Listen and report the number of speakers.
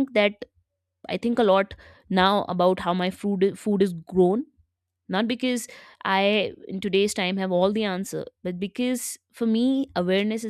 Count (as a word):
one